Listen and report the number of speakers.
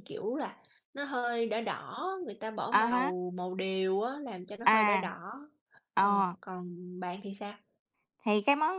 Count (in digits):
2